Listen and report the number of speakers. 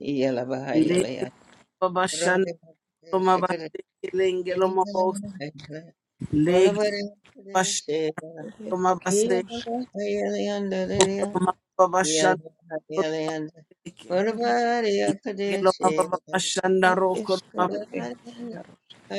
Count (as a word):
three